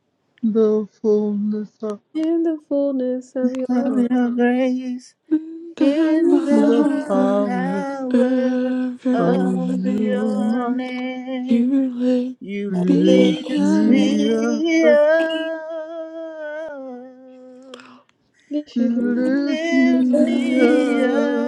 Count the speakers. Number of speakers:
four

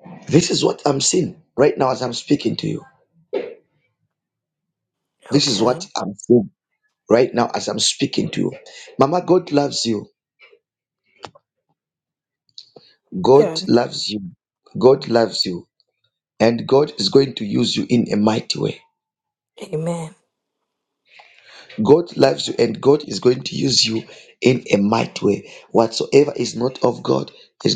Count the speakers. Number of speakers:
two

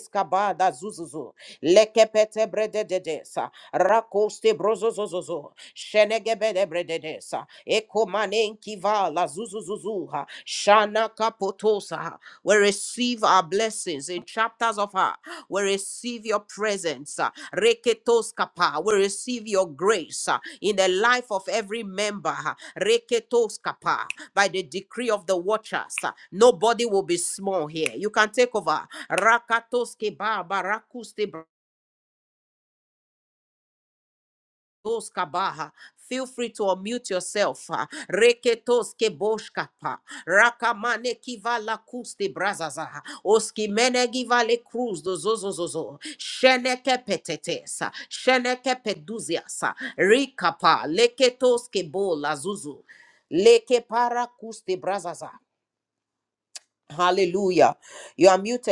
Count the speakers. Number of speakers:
one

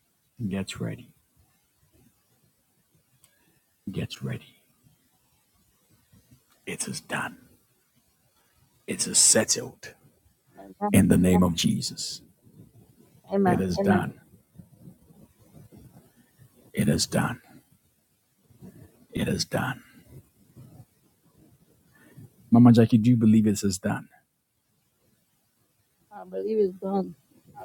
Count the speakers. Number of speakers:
two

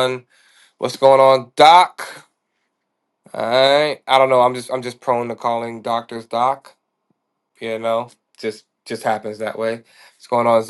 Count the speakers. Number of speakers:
one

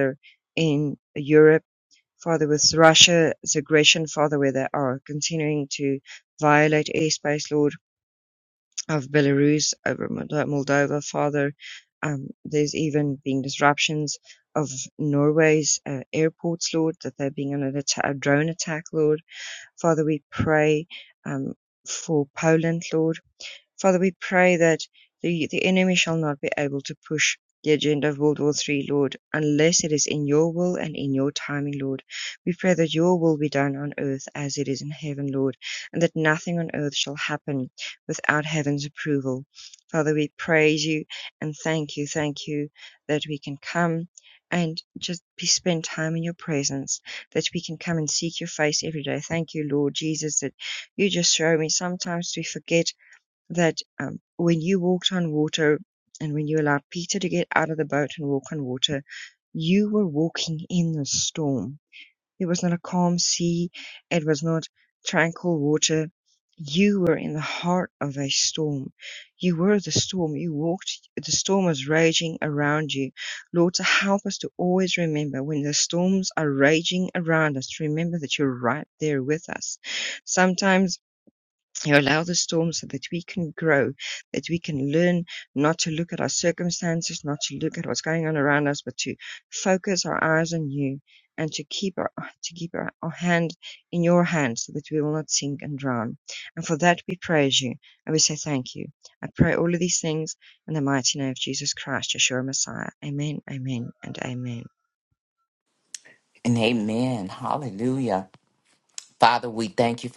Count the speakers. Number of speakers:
two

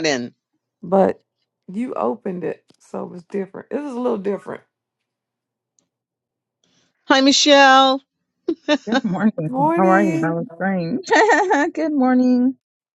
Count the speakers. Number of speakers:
three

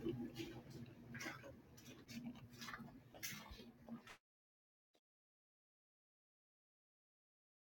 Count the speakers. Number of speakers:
zero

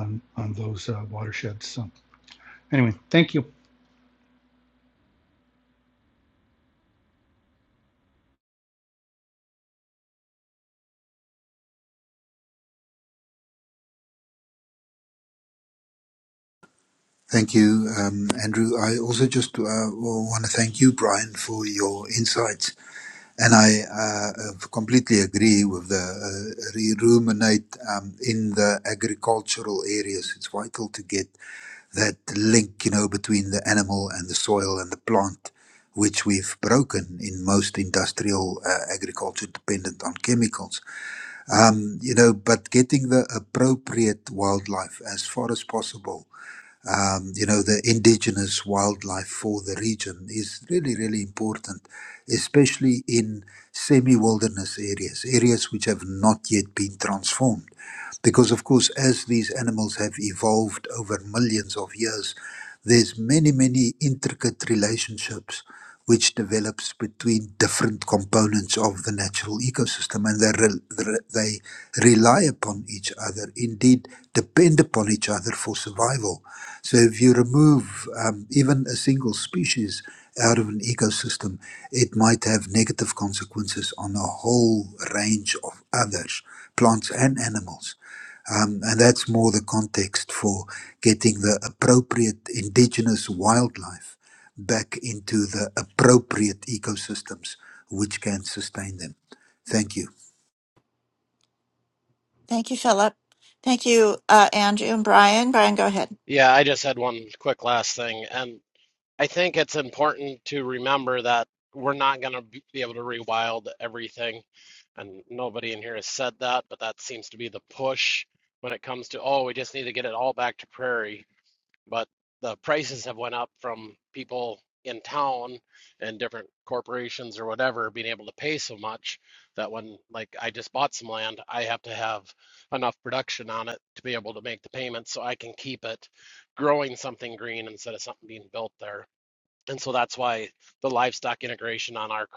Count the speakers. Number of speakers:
four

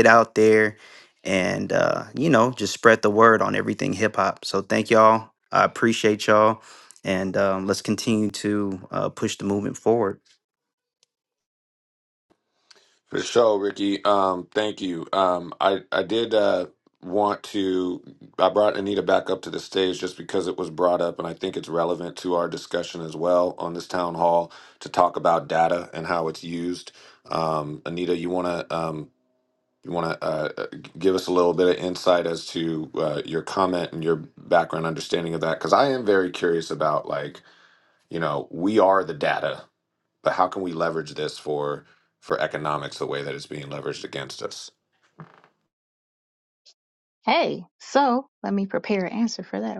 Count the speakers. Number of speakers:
three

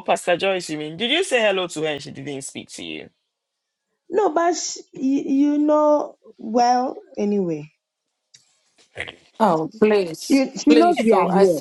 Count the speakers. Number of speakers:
three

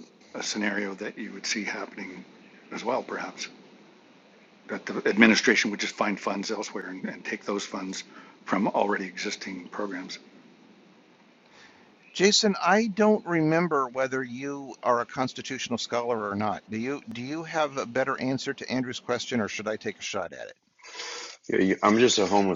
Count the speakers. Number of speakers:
three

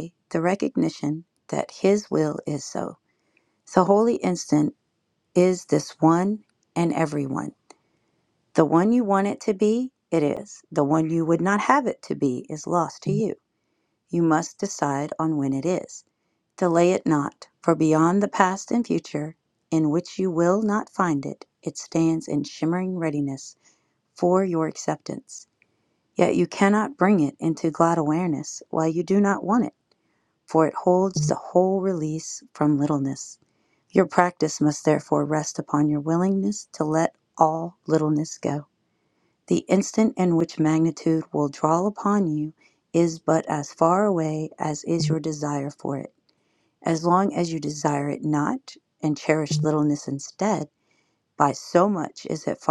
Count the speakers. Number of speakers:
one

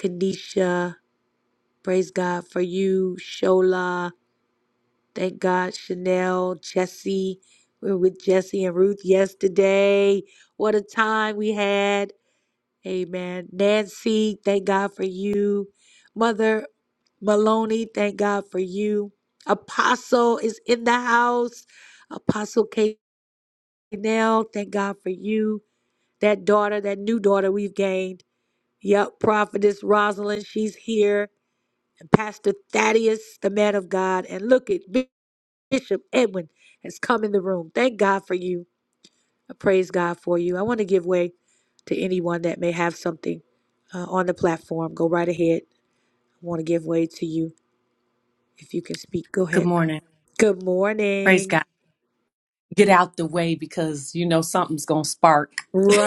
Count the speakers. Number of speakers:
two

